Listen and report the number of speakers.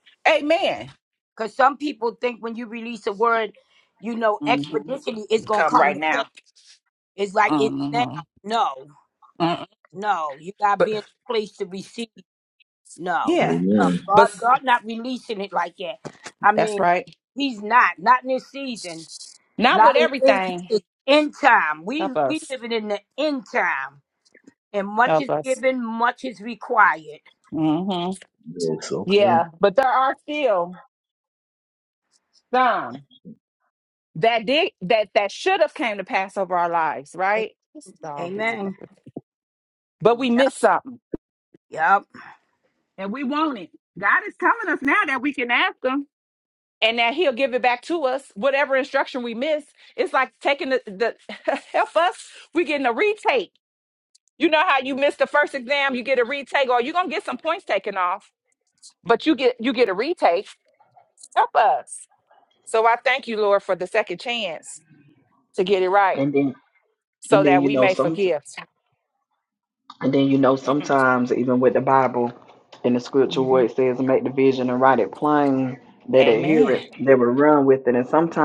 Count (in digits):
4